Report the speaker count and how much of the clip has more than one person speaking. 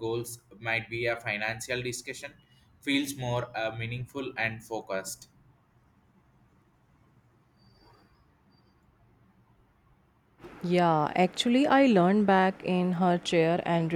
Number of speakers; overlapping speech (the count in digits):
2, no overlap